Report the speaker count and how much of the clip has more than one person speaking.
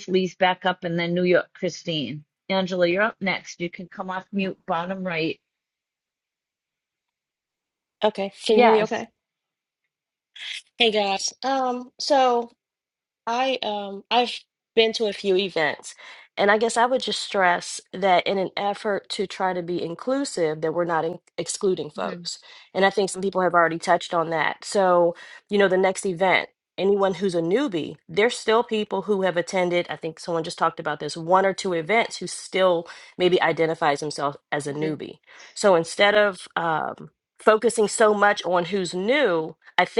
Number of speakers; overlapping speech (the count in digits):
2, about 2%